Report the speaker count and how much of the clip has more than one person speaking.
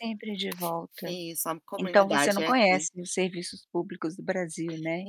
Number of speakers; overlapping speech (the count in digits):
2, about 23%